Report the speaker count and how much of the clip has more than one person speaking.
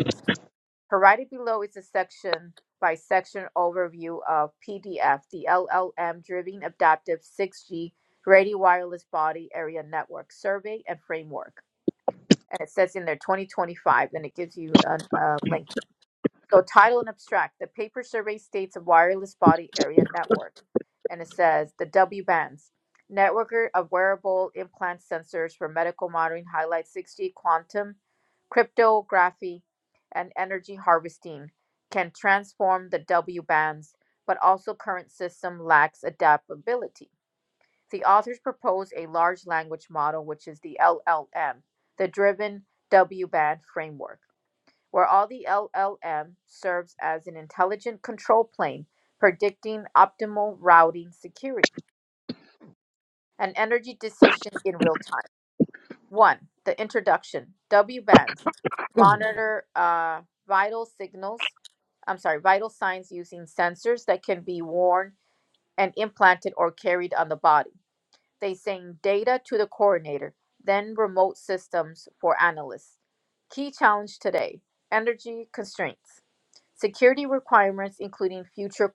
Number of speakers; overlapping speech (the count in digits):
1, no overlap